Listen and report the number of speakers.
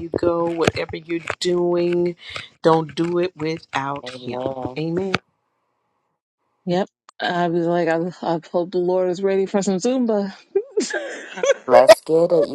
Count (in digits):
3